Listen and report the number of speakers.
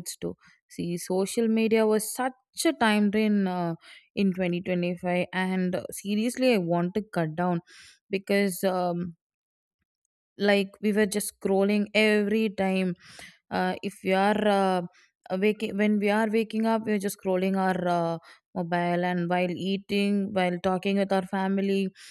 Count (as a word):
one